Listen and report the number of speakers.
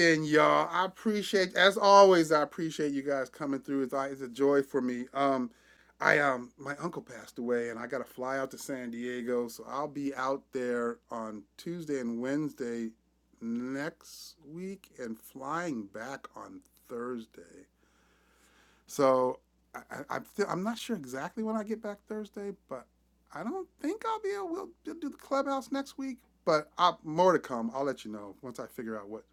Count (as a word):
one